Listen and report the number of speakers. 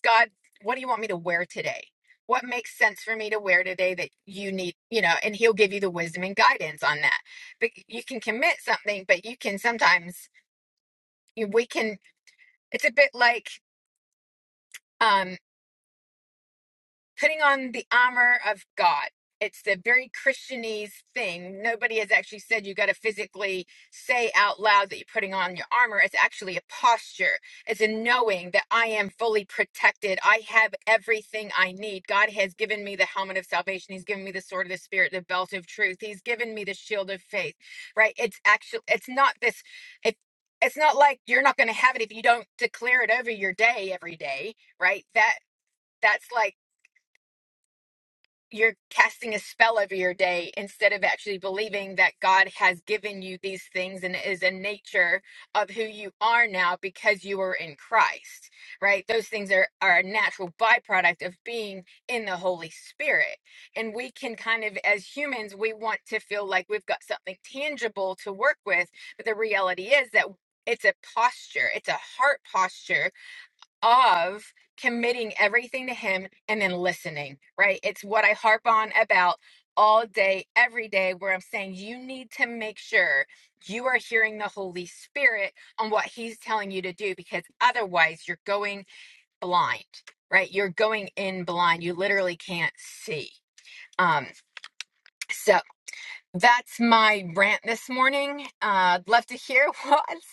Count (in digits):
1